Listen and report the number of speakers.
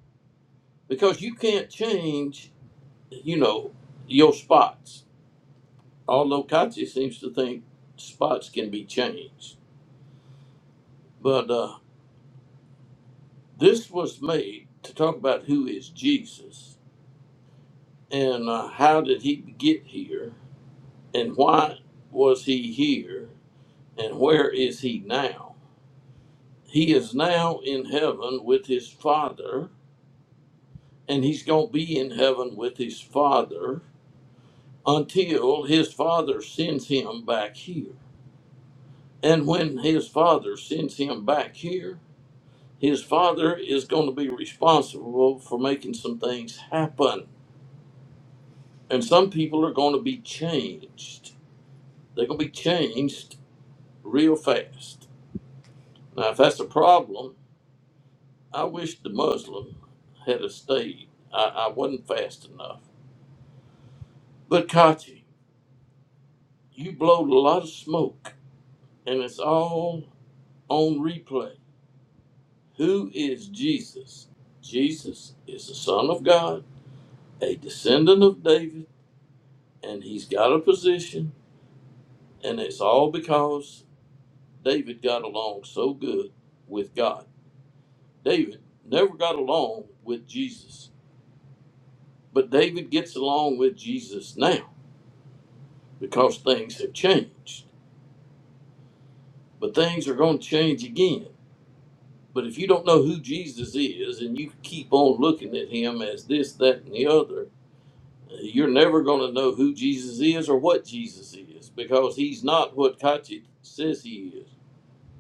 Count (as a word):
one